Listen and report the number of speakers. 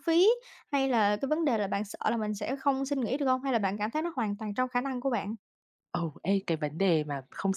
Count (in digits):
2